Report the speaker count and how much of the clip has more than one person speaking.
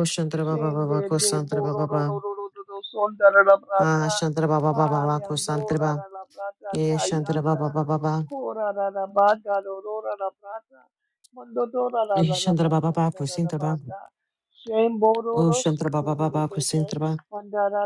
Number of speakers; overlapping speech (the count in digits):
2, about 41%